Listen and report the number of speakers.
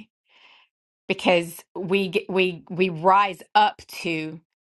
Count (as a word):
one